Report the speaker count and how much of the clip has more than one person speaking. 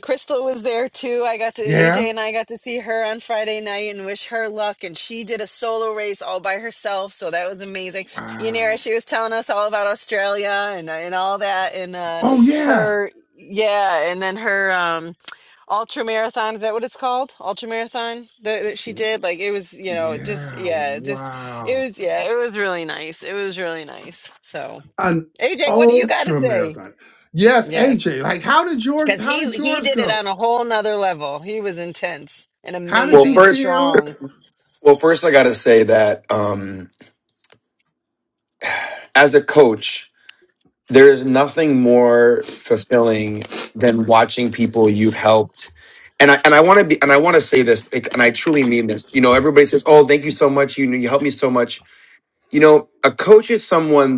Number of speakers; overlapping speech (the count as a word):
three, about 13%